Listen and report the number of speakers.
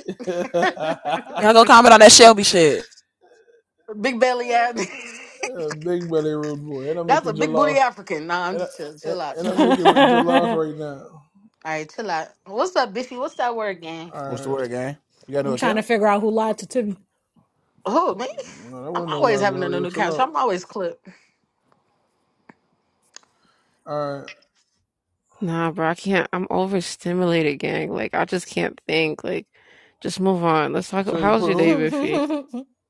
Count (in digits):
6